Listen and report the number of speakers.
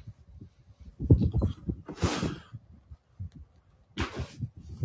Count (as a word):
zero